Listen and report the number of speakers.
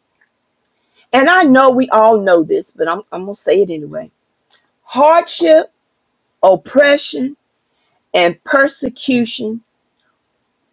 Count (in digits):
1